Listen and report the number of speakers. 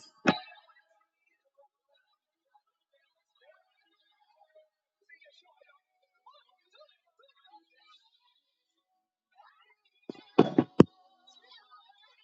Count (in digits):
0